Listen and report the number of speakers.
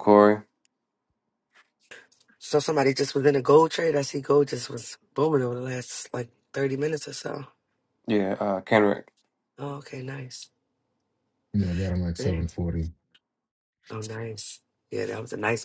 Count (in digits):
3